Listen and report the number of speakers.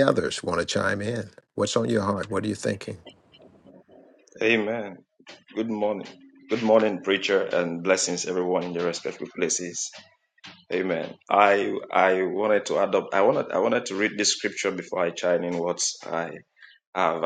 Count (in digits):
2